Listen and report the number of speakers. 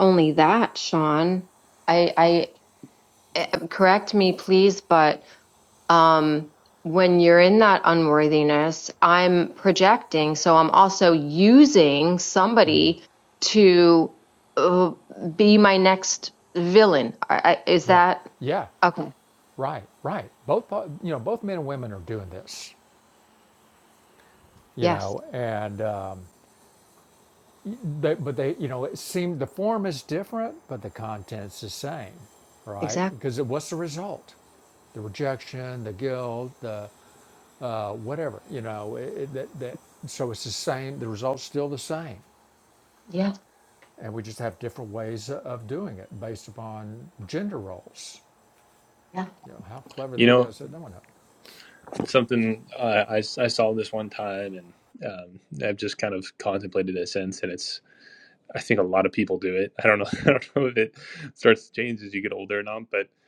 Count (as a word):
three